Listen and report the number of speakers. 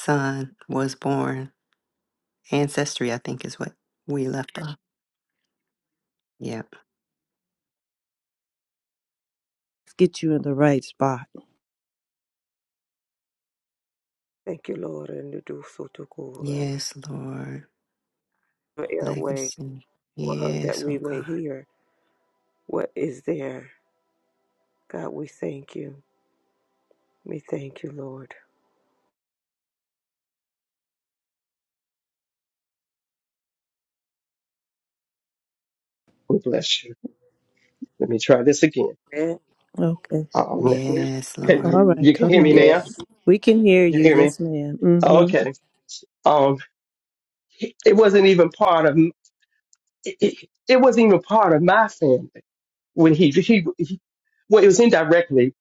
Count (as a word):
four